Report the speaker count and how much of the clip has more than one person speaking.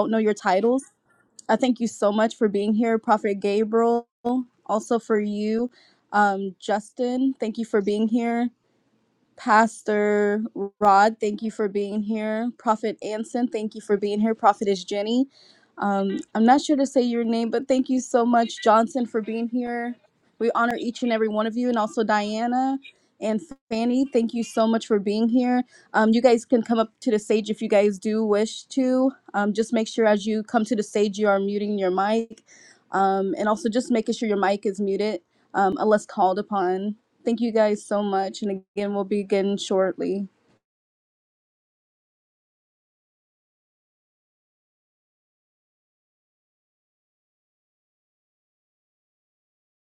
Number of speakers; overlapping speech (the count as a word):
one, no overlap